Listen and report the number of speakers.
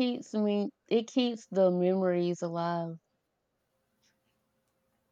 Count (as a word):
one